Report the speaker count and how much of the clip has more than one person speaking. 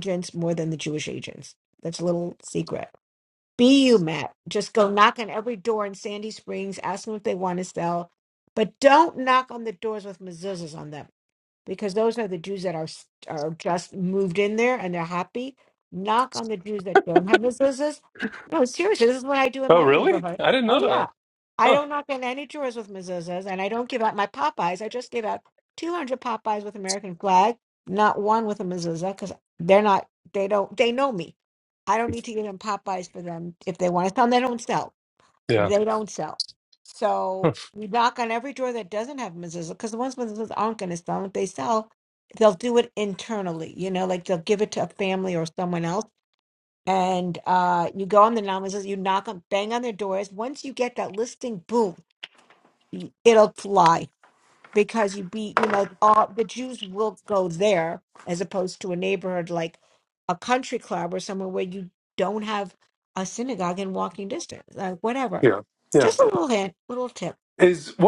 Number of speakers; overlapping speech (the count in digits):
2, about 3%